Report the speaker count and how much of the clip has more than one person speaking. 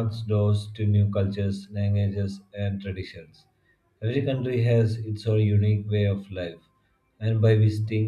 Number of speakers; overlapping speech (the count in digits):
1, no overlap